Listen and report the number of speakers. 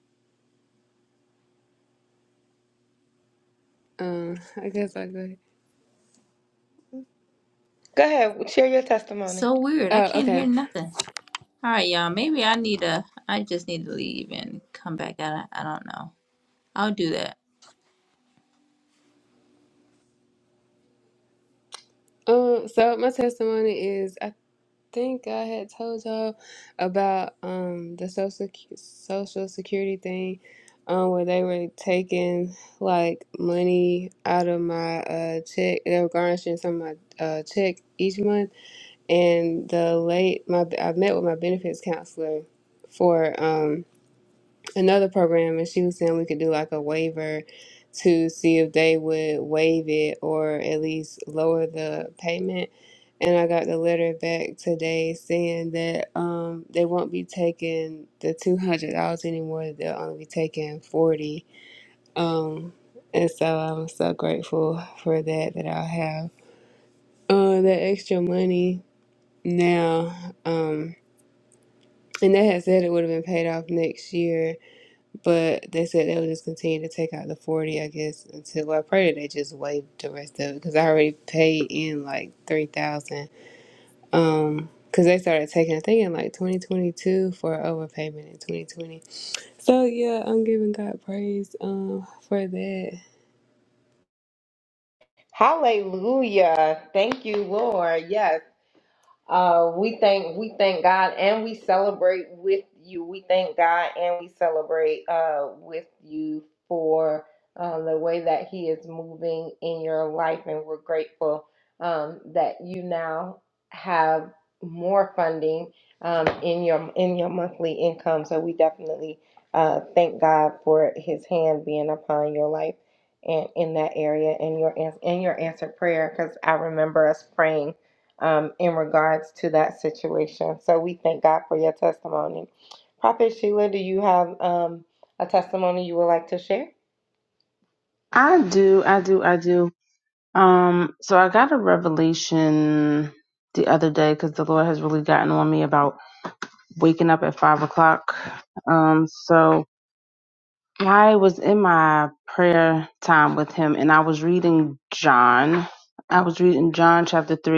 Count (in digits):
4